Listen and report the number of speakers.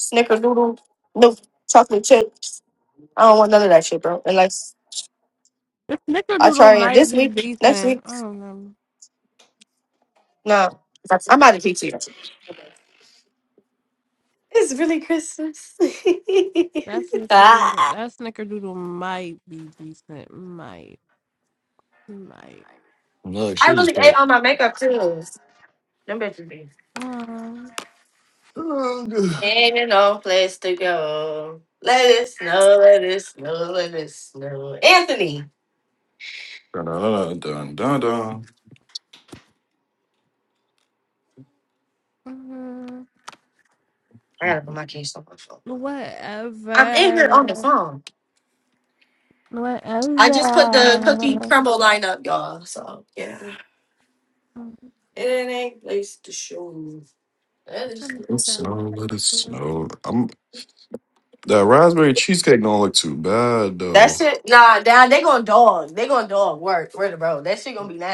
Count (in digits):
3